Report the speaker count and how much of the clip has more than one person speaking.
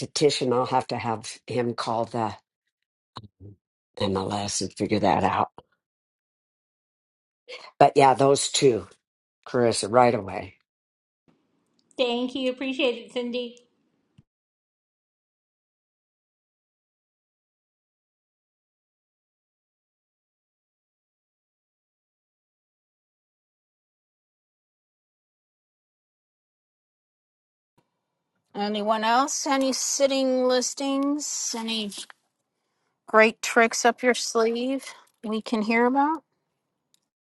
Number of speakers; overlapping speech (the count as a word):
three, no overlap